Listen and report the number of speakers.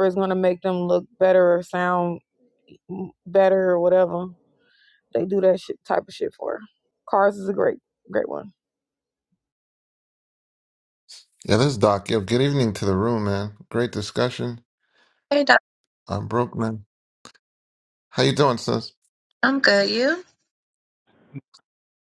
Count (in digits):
3